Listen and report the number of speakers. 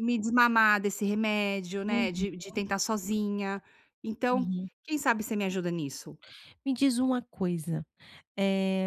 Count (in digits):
2